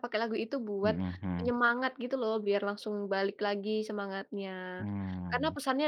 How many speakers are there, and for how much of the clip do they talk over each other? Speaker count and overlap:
2, about 10%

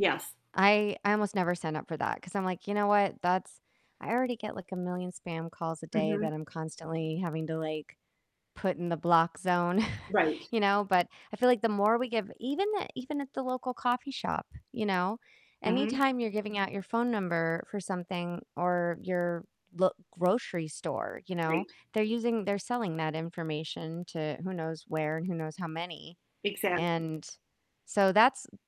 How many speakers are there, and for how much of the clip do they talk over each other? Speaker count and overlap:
2, about 4%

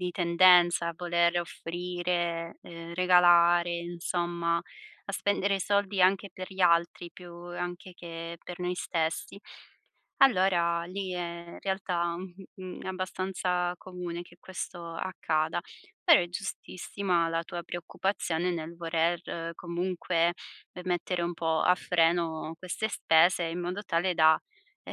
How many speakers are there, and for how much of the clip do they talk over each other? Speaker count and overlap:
1, no overlap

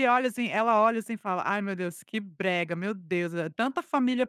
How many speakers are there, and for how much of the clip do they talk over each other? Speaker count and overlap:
1, no overlap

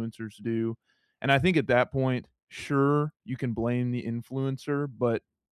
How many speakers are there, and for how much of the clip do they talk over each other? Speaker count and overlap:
1, no overlap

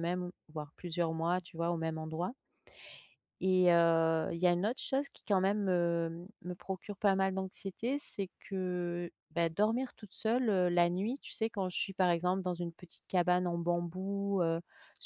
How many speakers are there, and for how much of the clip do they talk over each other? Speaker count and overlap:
1, no overlap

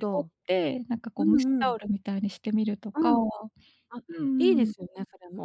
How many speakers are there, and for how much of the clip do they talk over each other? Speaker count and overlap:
2, about 26%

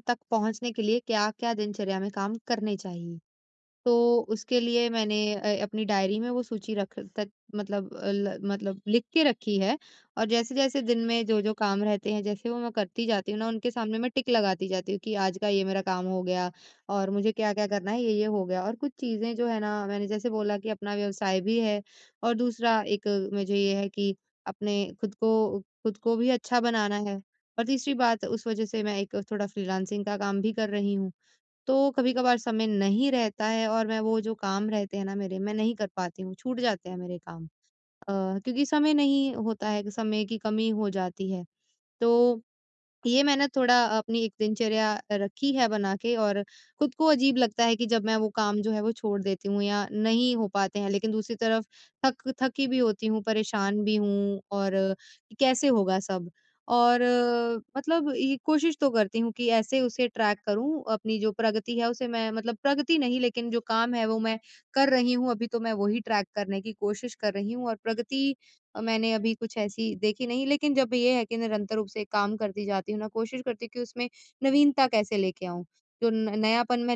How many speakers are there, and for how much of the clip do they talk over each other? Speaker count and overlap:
1, no overlap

